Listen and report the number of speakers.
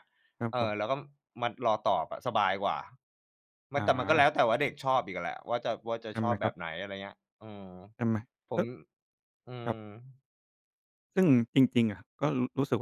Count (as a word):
two